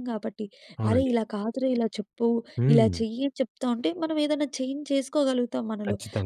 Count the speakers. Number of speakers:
2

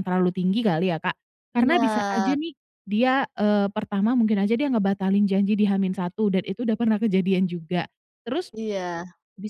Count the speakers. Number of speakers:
2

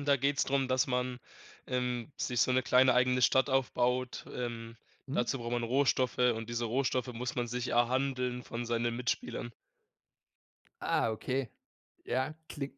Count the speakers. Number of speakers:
2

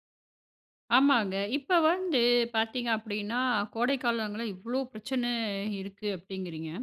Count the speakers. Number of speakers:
1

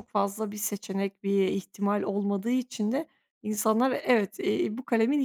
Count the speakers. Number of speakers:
1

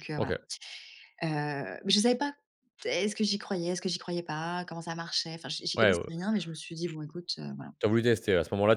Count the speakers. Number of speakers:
2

